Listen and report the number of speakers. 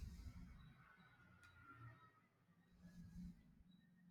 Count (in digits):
0